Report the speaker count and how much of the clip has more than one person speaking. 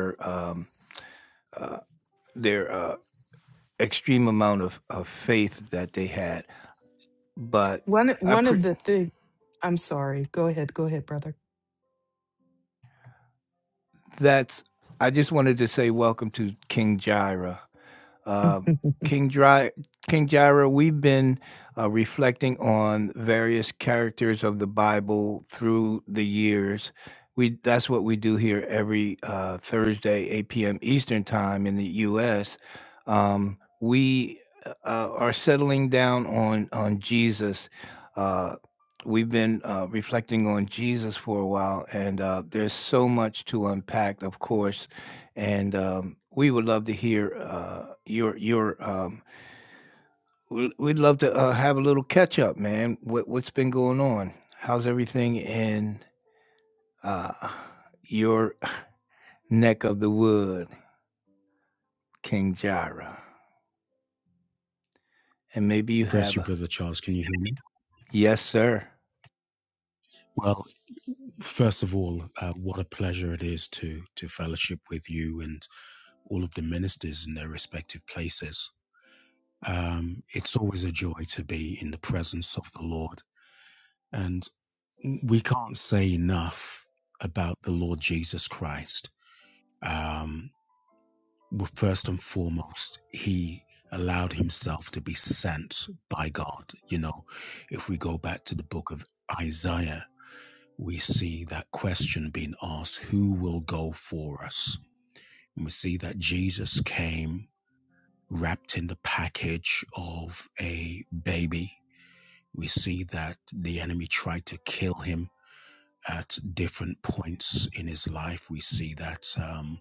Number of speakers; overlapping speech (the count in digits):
3, about 1%